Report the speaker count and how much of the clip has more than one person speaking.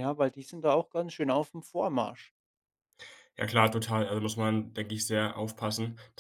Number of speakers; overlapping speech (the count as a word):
two, no overlap